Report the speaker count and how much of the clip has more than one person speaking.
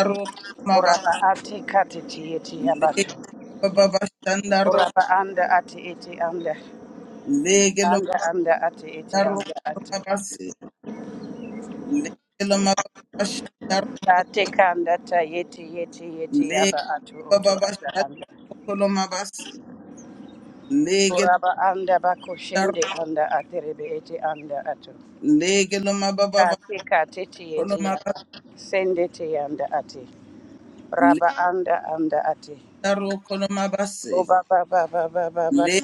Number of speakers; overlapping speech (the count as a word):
two, about 10%